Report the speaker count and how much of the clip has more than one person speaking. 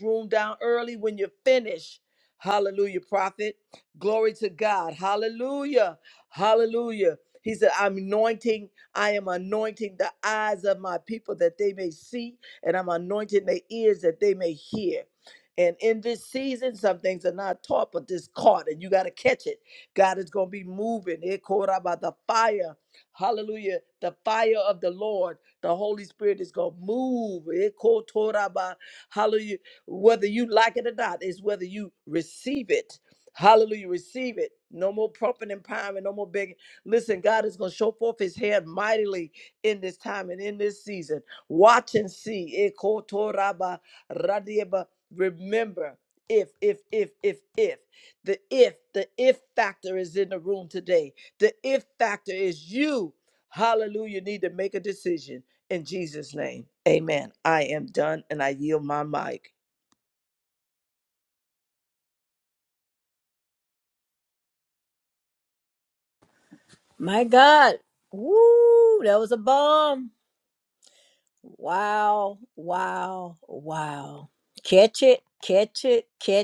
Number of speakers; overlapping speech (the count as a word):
two, no overlap